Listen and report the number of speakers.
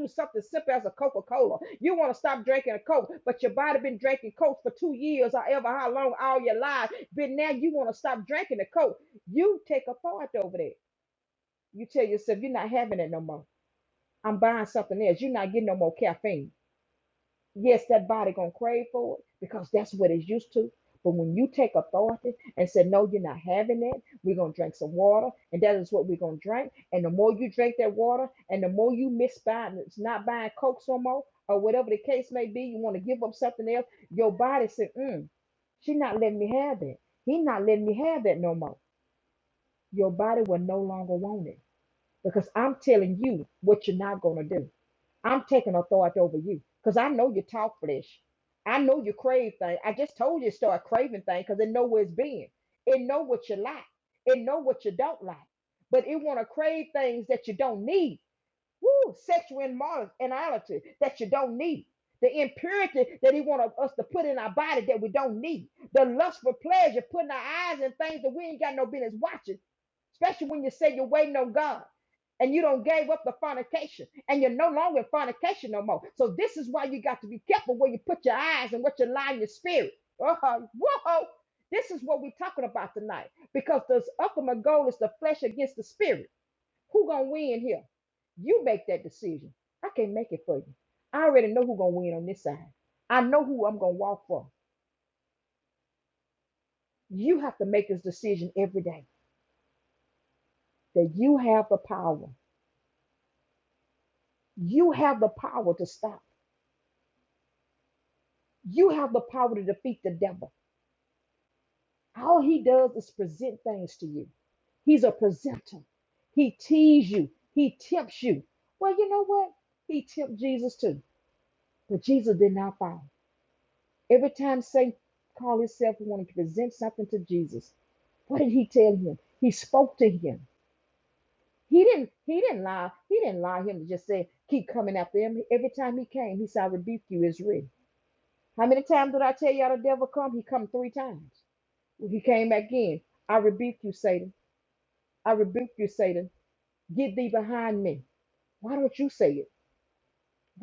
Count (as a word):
one